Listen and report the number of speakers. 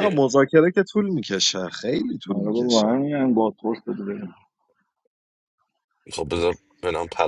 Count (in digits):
3